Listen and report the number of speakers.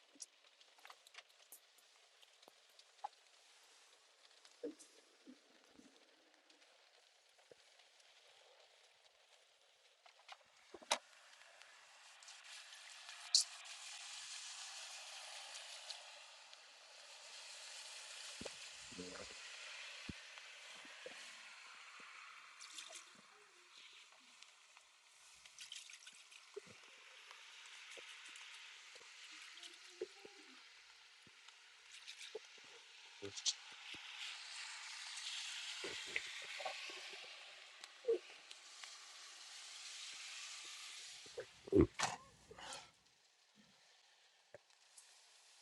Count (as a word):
zero